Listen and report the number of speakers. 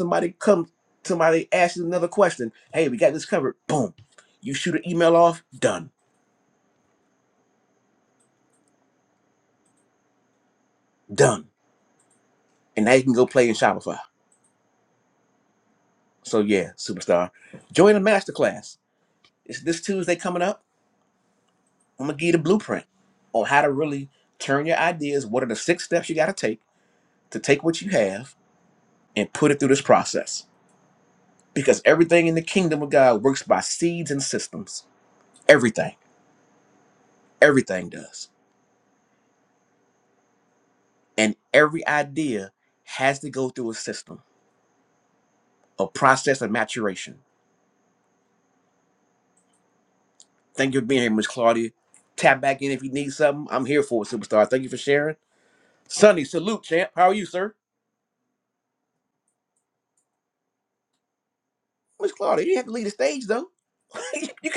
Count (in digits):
1